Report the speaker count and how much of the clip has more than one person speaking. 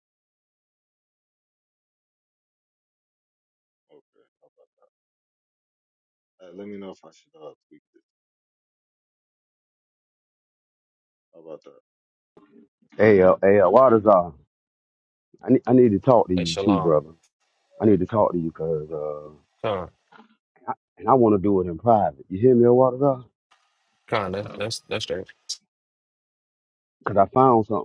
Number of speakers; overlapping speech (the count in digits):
3, about 2%